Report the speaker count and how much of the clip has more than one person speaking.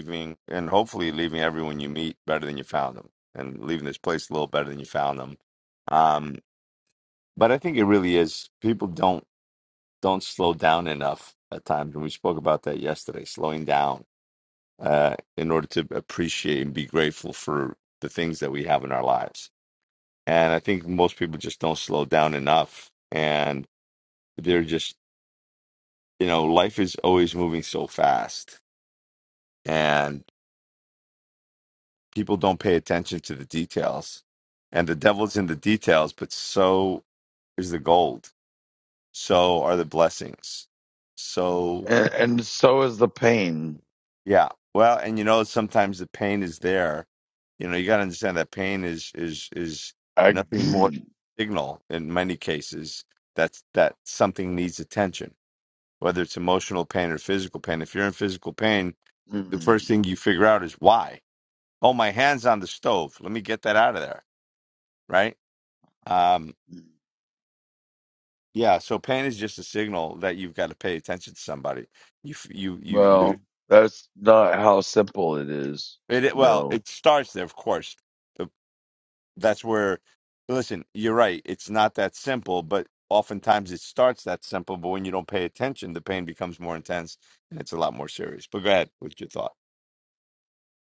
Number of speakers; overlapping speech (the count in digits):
2, about 1%